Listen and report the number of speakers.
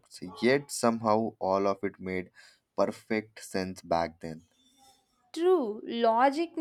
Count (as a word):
two